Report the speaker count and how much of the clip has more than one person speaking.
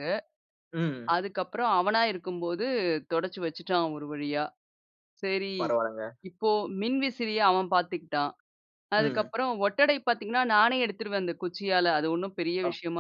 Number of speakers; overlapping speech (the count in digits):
2, about 3%